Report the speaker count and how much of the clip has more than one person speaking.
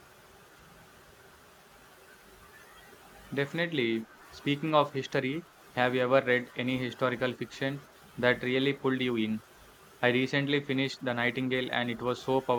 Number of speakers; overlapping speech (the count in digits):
1, no overlap